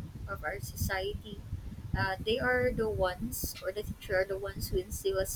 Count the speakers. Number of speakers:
1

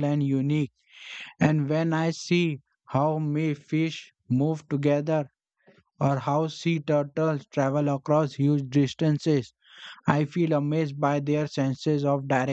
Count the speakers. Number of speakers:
1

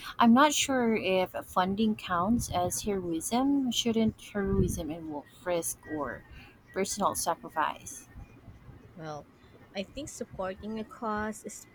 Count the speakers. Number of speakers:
2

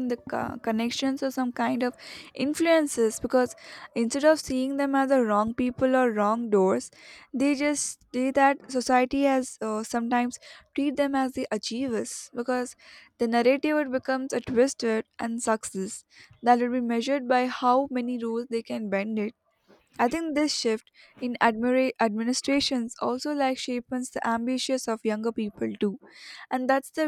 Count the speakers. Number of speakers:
1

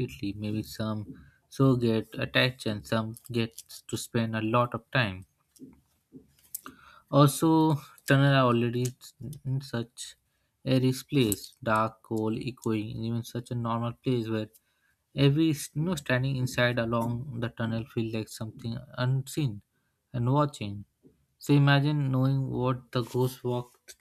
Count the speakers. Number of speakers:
1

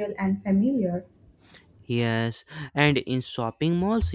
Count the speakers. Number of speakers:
2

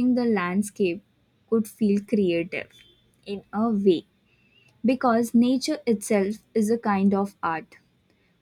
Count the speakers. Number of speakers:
1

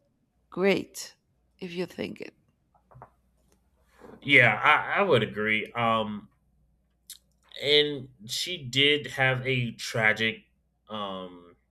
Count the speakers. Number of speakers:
2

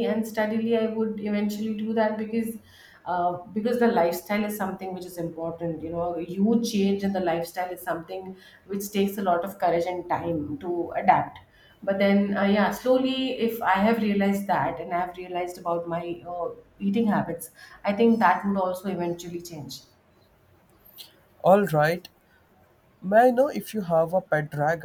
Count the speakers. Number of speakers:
2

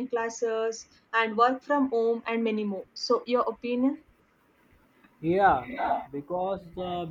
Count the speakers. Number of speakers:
2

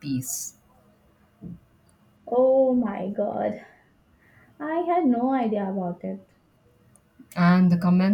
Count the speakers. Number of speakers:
2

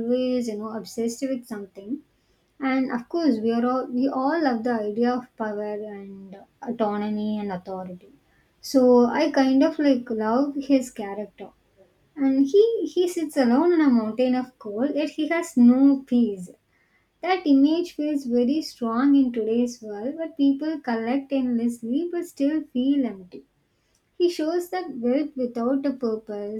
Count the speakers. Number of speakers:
1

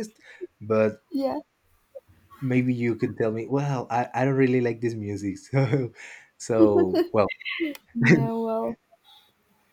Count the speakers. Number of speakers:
2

